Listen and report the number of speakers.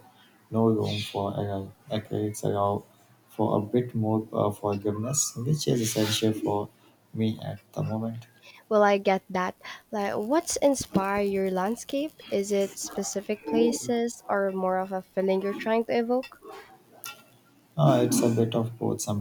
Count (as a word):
two